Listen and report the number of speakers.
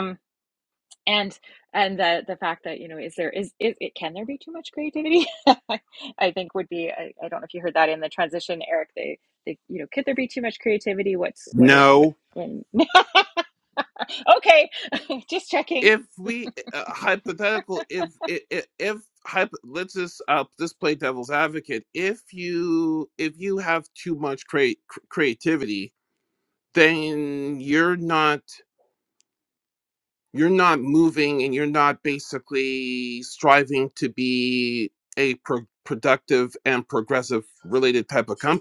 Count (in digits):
2